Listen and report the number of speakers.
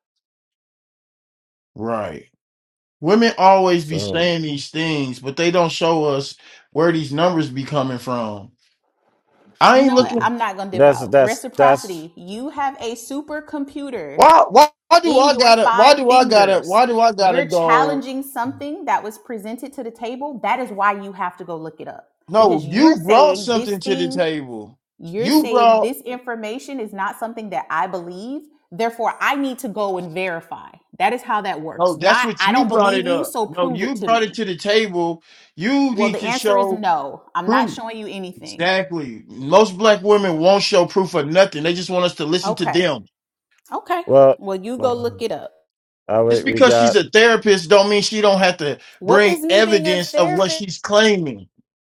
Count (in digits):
3